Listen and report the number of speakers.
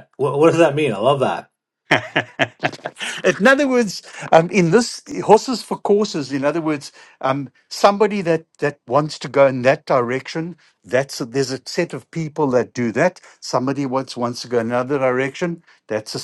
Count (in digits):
2